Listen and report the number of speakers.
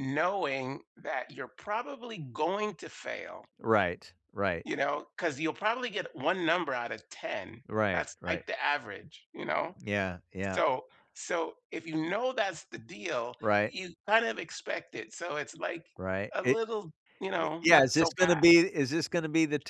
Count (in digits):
2